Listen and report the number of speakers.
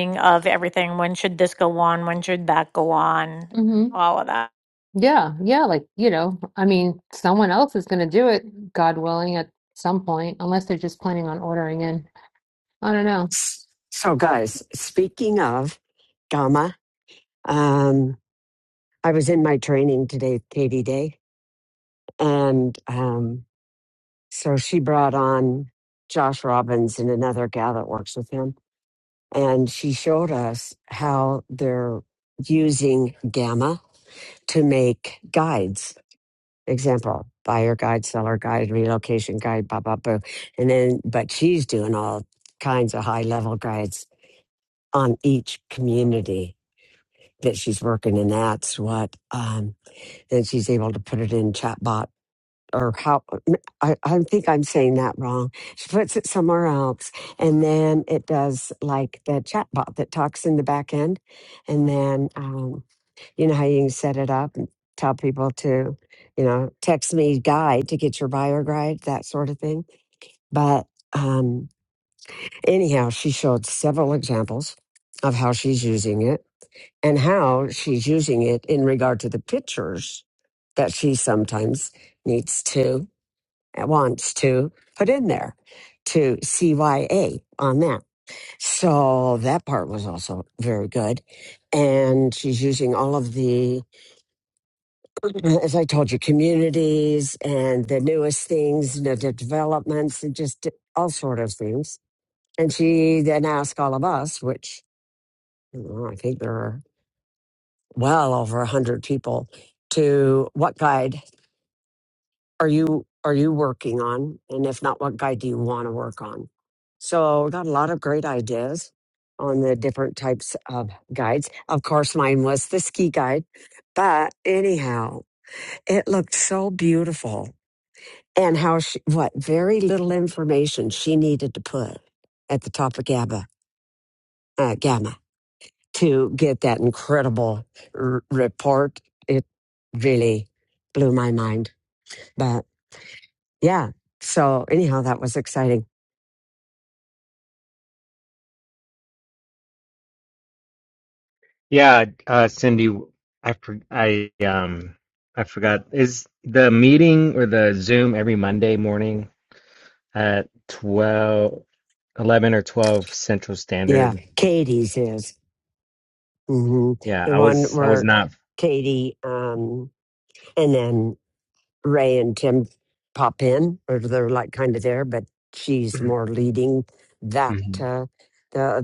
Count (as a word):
four